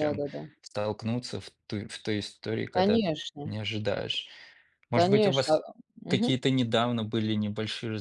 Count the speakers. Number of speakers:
2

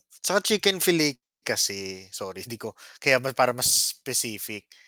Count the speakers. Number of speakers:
1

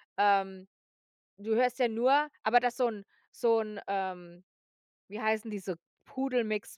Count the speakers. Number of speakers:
1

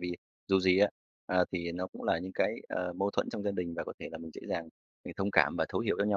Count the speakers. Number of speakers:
1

